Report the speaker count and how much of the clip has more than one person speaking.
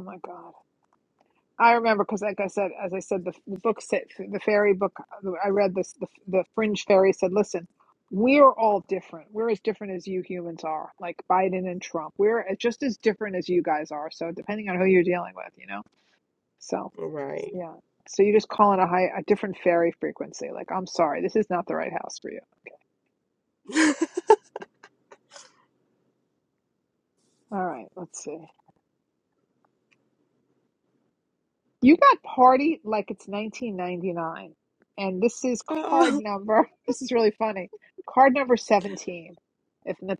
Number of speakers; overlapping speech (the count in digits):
2, about 1%